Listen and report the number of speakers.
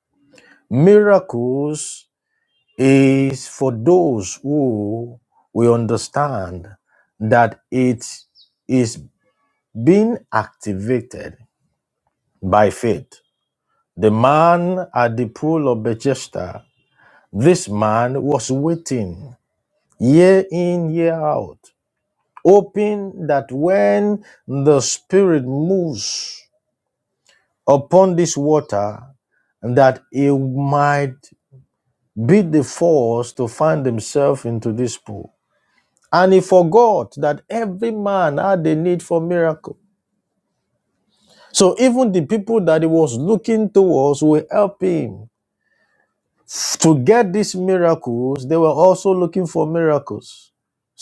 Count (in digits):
1